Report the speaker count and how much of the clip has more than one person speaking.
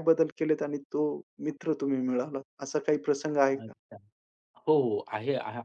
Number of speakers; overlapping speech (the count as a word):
two, about 5%